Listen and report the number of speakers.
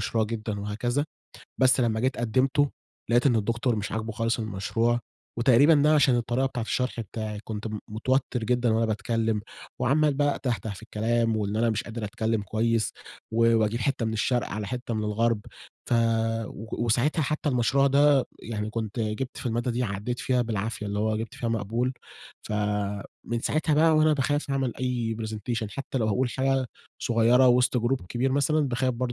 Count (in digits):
1